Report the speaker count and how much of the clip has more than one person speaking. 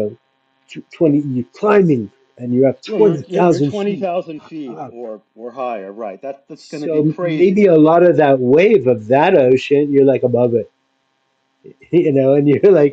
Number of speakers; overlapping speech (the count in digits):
2, about 17%